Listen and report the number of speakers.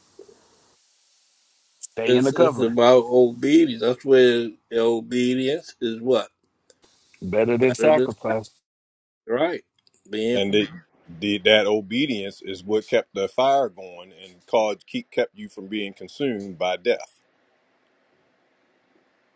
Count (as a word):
three